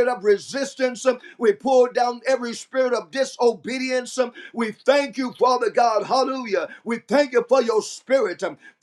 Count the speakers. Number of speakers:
1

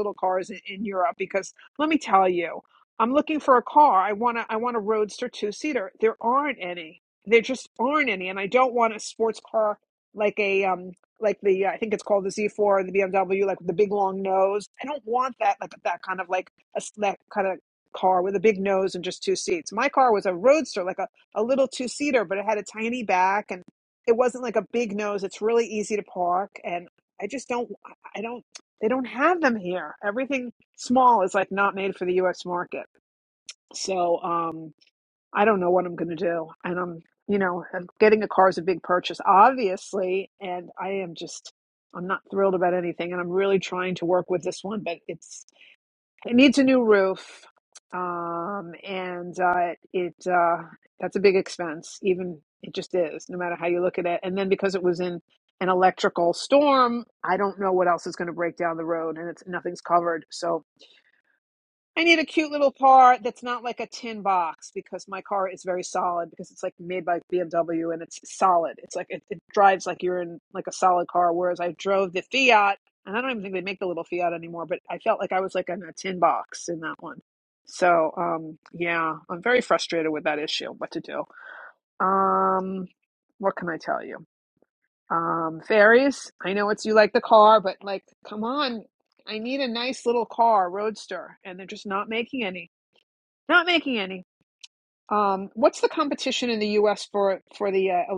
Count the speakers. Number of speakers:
1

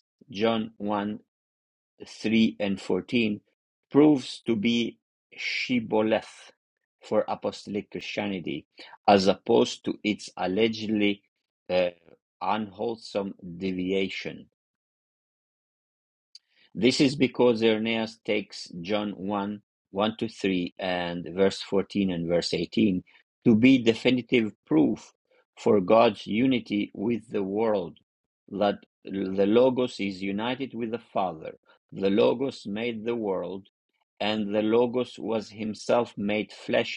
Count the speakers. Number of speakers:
1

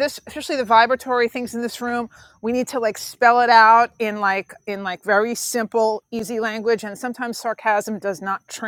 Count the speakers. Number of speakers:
1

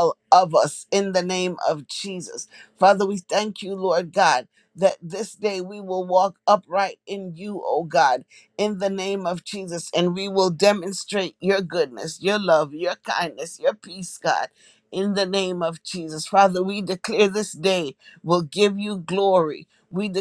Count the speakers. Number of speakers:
1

